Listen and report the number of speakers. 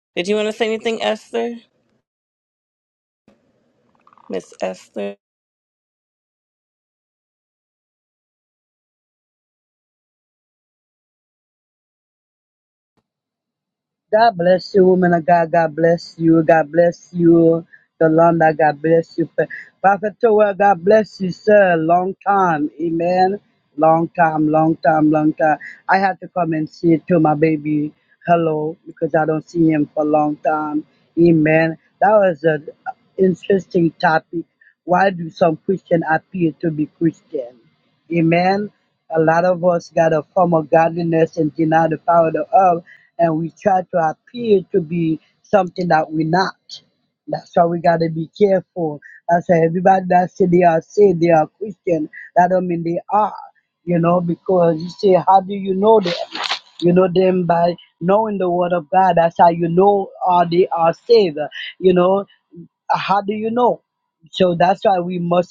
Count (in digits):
2